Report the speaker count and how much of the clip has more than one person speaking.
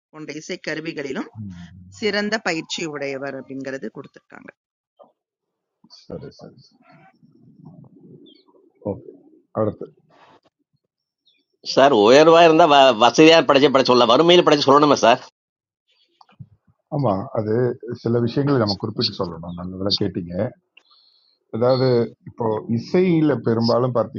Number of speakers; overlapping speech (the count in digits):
3, no overlap